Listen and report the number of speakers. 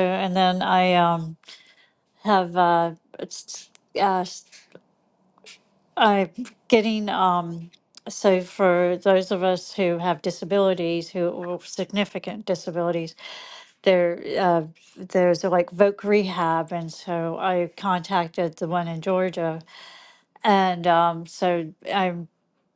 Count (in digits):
1